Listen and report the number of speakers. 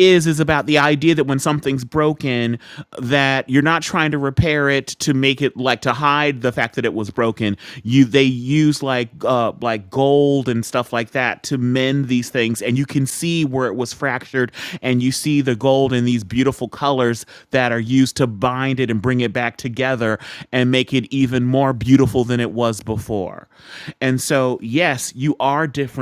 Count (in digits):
1